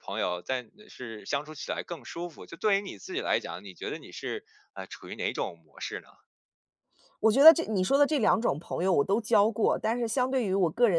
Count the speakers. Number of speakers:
2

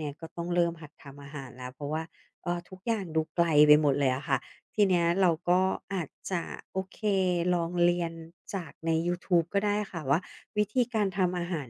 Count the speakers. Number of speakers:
1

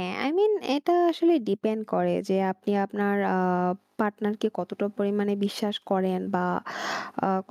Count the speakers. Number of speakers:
1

